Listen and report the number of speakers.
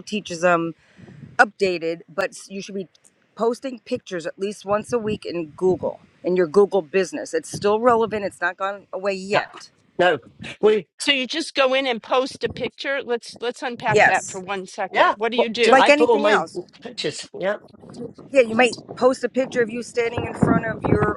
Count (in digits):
3